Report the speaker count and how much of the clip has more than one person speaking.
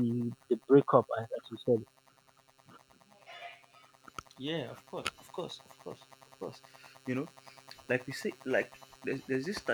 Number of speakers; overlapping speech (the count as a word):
two, no overlap